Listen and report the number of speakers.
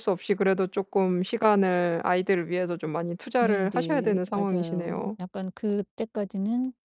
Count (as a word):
two